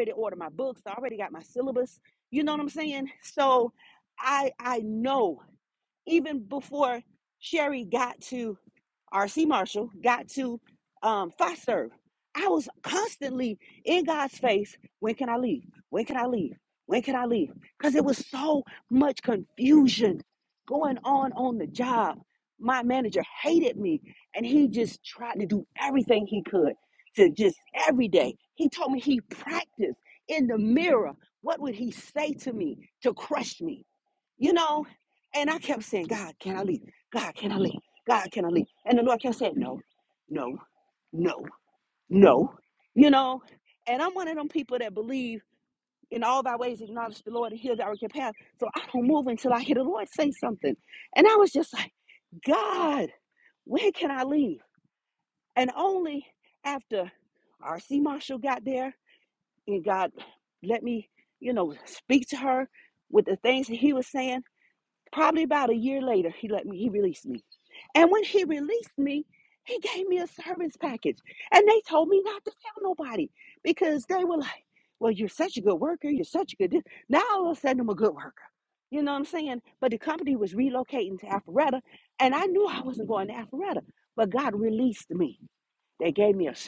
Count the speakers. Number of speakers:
1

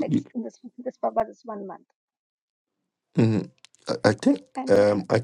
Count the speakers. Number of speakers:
2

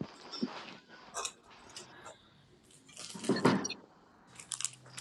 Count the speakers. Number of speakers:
0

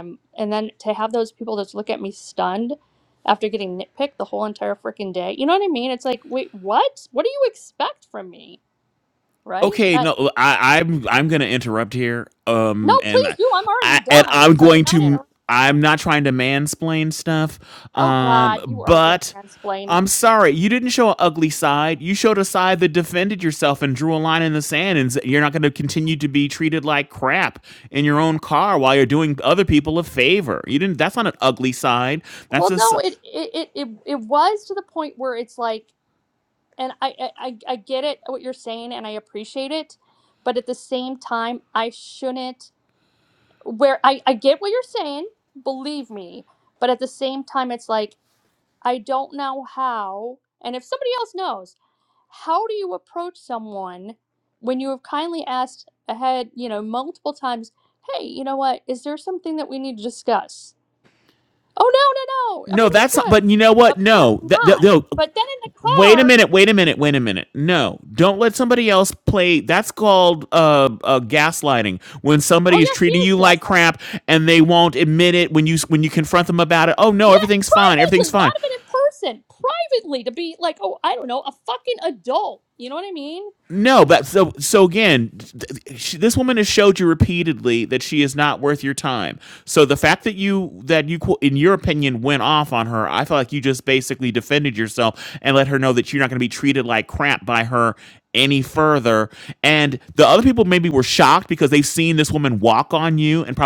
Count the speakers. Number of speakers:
2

